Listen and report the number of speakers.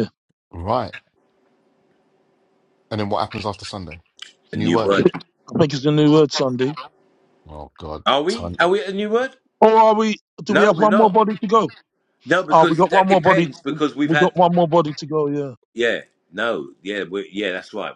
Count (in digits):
3